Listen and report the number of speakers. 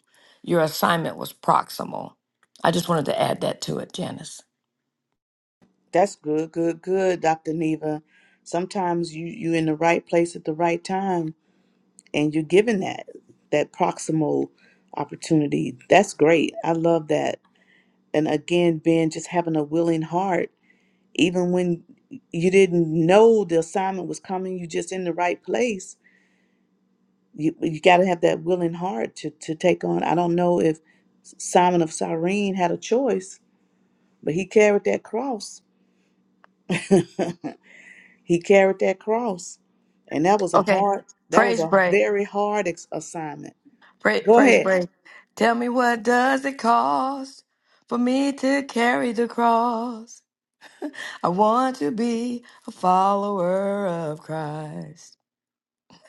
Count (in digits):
2